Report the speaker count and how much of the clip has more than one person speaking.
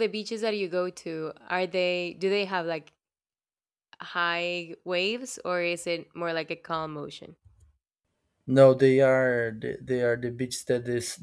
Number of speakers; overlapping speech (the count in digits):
2, no overlap